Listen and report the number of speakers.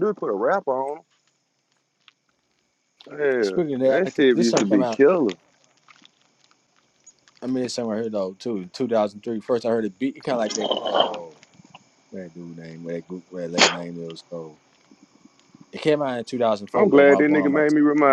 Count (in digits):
2